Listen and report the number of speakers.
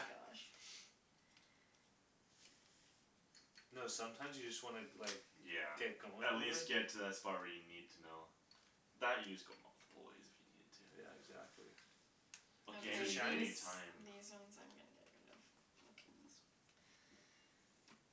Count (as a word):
three